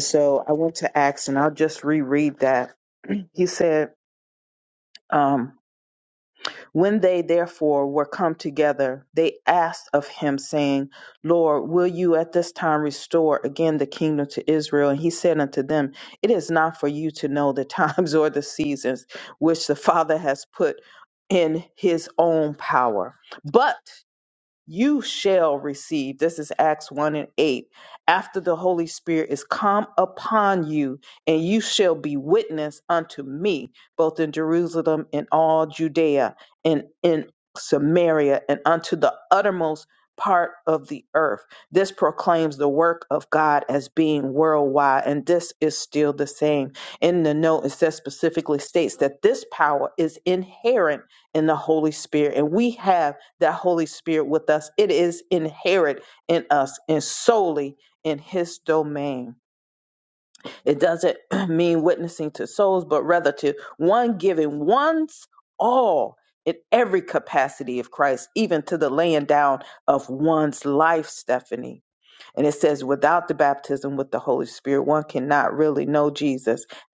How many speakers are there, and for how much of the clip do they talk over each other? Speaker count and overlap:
1, no overlap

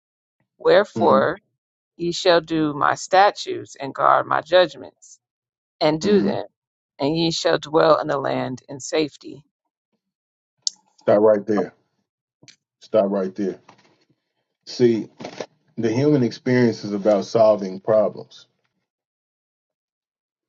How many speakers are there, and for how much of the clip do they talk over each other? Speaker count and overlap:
2, about 3%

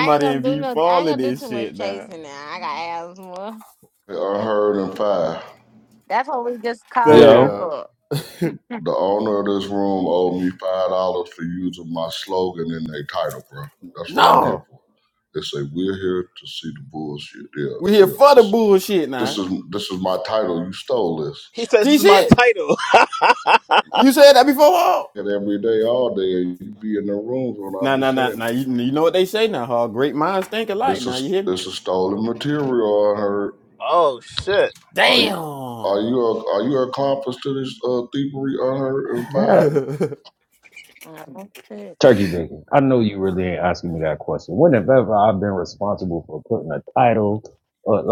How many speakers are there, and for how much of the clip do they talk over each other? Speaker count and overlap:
5, about 14%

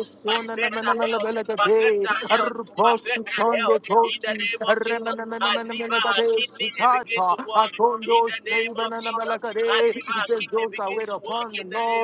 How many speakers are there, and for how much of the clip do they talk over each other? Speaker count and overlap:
2, about 77%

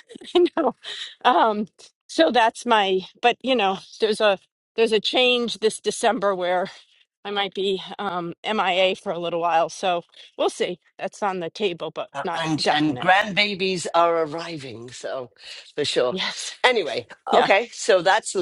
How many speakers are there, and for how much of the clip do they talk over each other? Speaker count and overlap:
2, about 6%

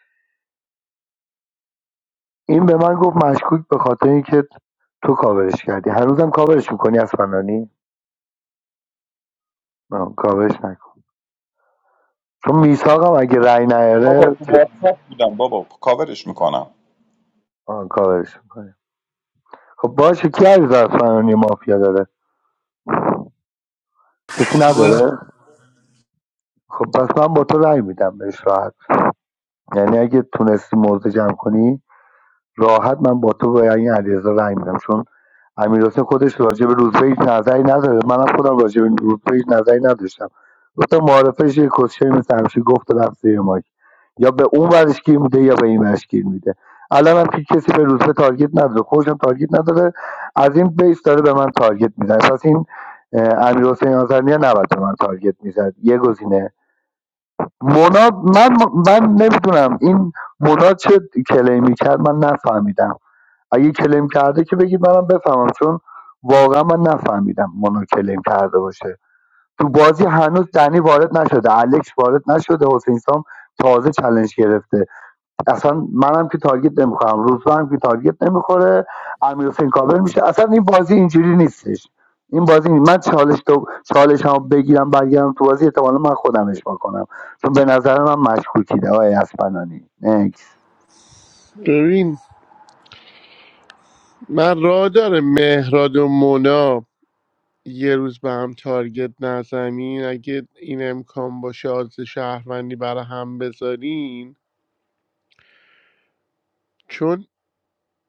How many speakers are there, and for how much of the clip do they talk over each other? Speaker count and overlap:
3, about 1%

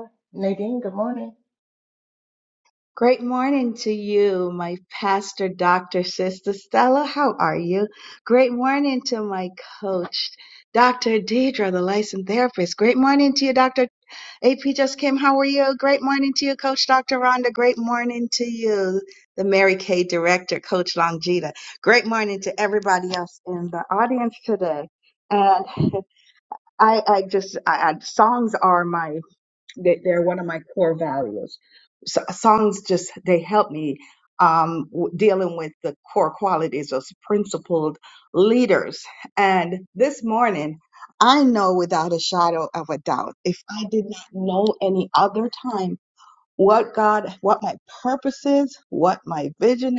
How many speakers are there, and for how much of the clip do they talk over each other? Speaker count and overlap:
2, no overlap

